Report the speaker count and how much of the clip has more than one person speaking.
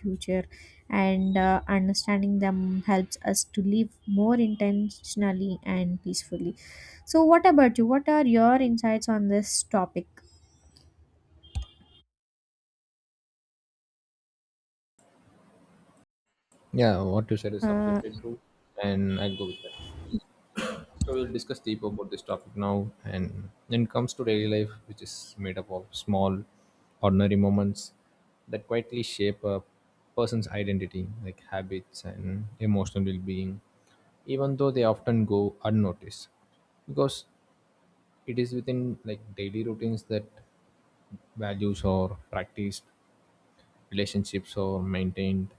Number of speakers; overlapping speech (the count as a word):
two, about 1%